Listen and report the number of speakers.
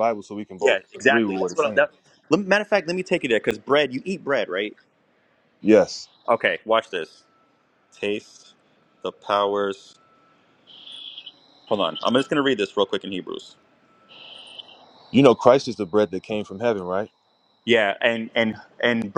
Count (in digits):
2